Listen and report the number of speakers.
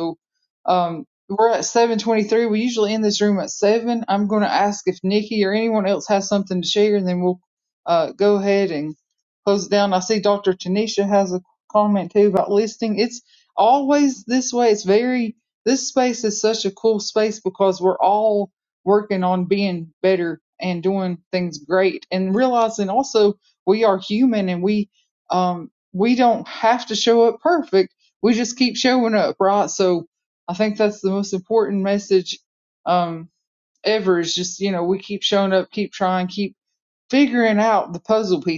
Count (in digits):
1